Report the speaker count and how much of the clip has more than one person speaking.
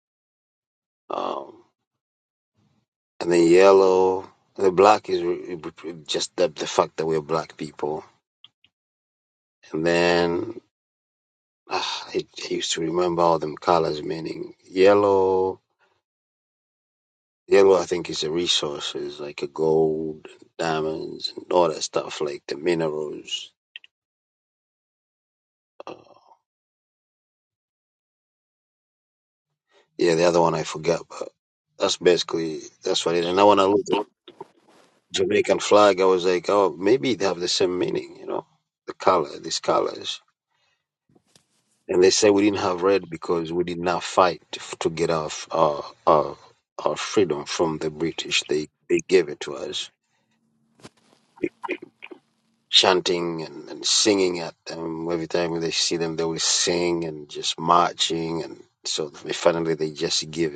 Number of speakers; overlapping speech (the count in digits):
1, no overlap